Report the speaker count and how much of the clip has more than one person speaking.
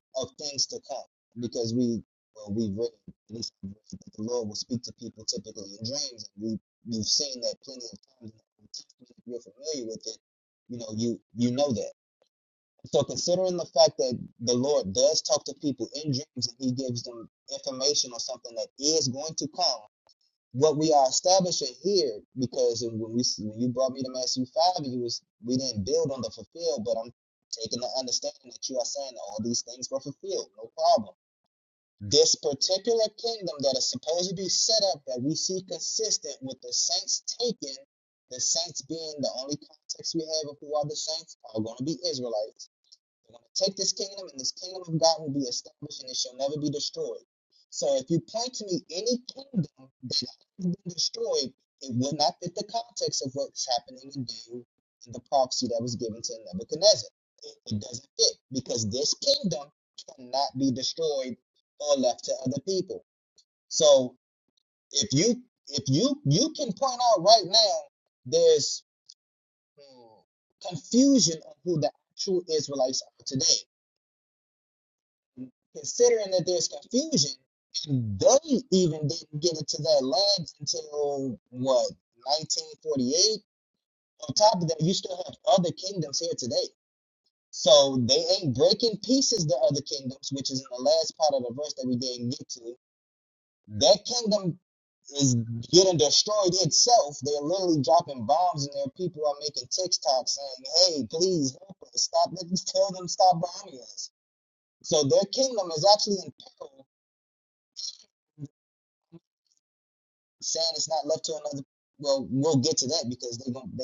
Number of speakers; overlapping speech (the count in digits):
1, no overlap